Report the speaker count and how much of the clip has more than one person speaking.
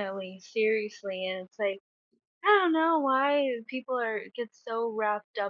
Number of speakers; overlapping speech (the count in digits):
1, no overlap